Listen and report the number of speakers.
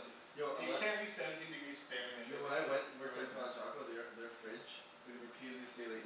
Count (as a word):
two